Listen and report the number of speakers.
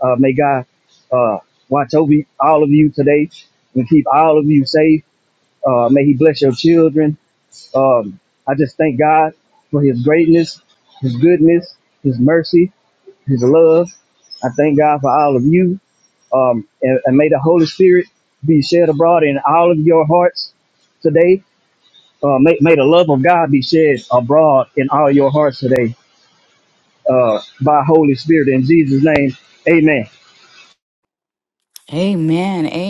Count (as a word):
two